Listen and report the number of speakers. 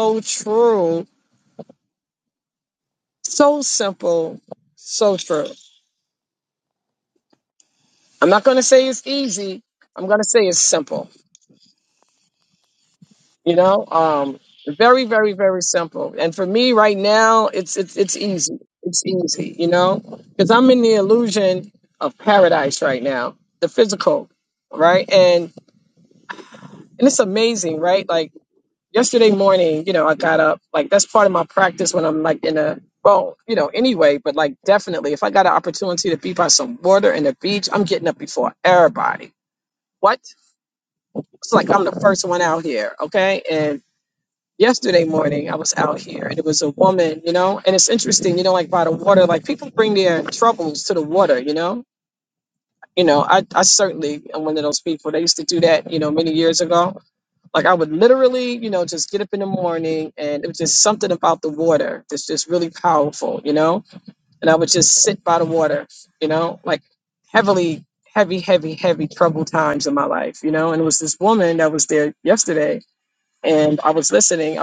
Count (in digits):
1